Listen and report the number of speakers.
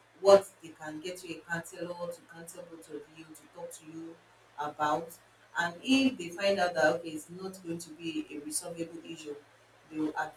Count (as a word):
one